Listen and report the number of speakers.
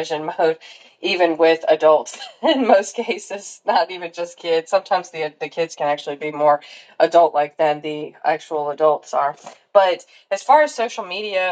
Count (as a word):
one